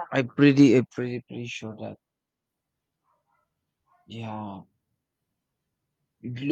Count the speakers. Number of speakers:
one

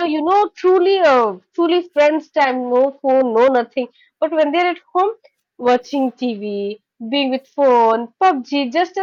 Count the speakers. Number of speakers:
one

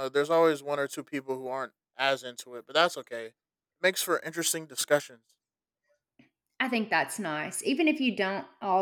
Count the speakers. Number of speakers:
two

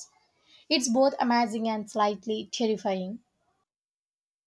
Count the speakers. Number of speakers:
one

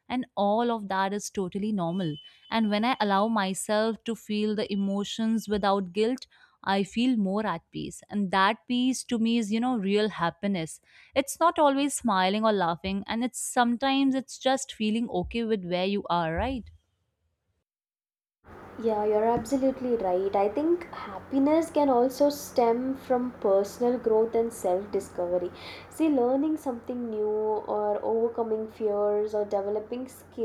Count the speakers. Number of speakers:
two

